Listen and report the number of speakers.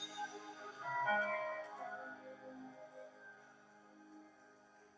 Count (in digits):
0